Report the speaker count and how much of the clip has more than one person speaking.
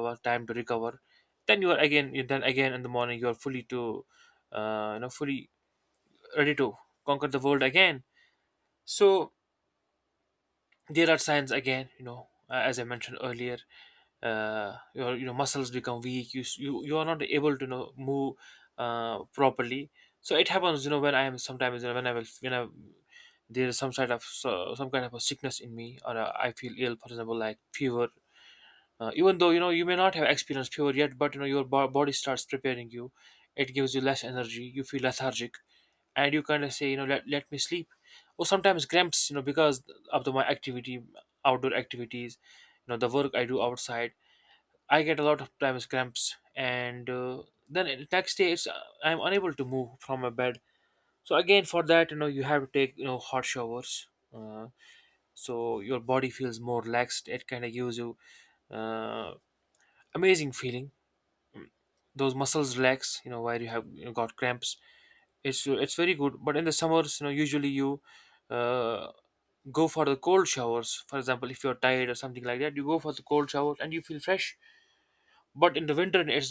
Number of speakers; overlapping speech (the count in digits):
1, no overlap